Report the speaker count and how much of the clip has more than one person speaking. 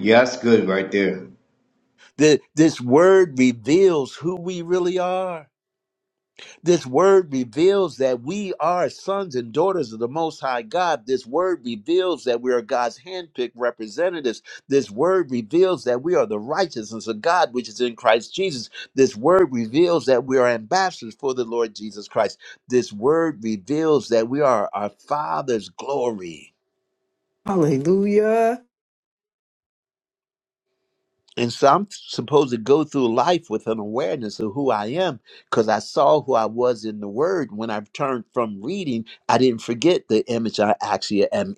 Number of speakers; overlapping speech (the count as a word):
three, no overlap